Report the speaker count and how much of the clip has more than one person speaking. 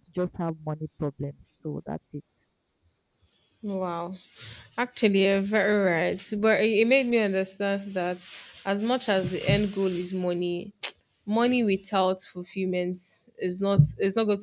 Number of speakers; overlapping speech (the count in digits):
2, no overlap